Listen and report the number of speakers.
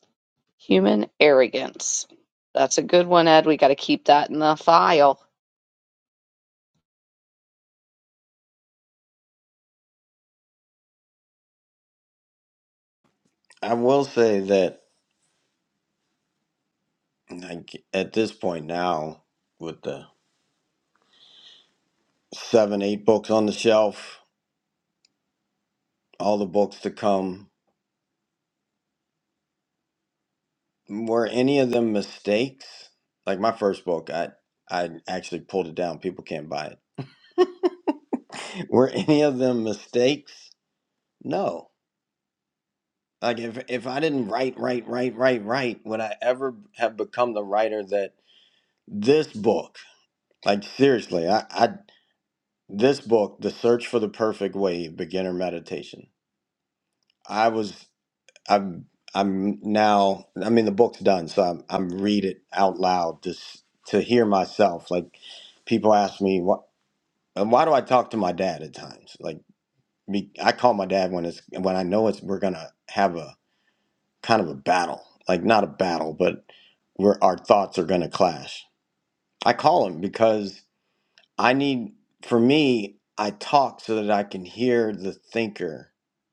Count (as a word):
two